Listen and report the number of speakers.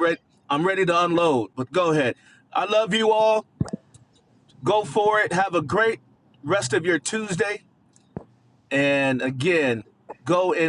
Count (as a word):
one